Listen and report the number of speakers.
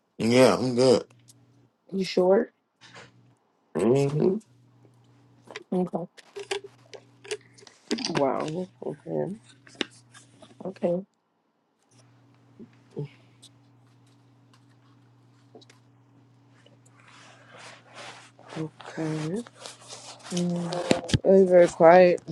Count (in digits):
3